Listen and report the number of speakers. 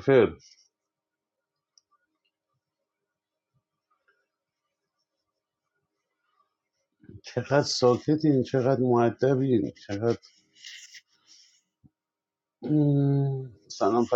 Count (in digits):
1